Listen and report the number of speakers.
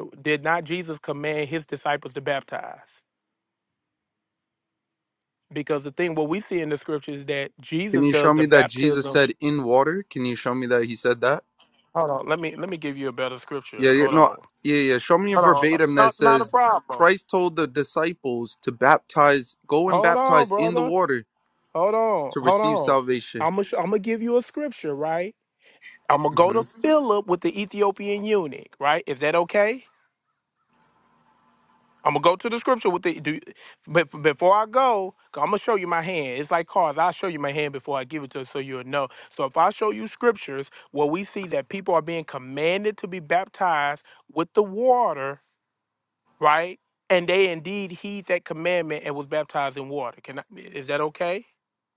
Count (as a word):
two